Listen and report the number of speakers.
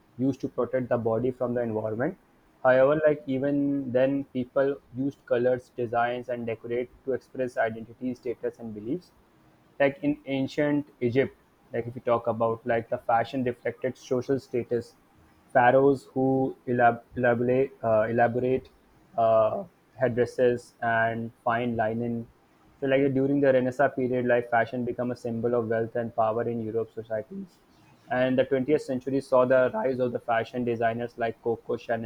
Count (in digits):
1